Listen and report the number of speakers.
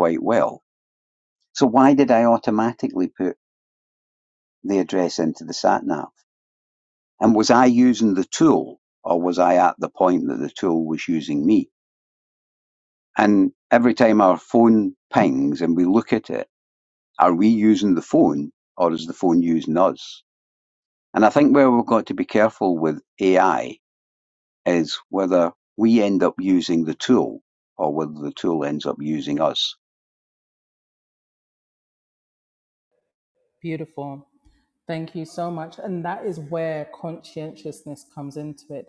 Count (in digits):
2